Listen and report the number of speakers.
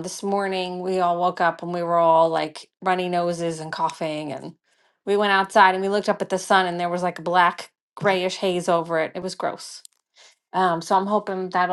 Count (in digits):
1